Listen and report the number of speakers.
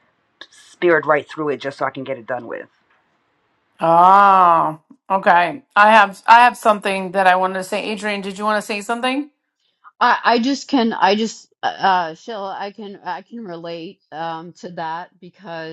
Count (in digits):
3